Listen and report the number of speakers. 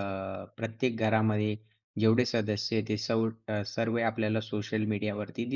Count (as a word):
one